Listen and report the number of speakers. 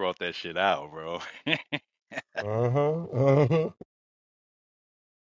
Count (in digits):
2